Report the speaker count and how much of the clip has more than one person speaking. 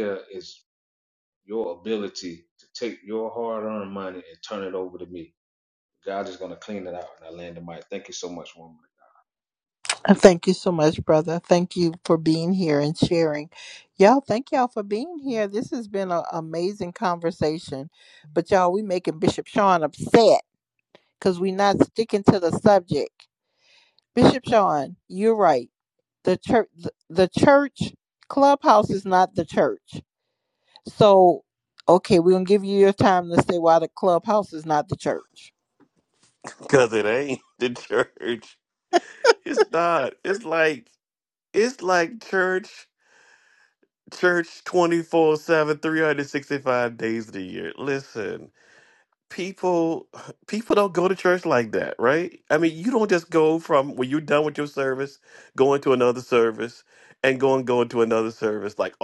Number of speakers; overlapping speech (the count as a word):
three, no overlap